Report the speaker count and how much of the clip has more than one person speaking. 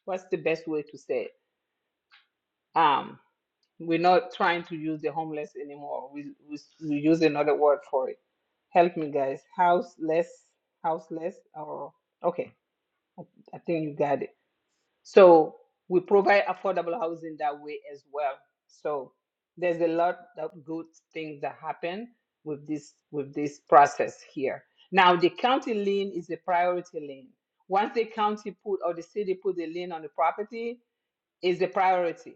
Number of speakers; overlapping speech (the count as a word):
one, no overlap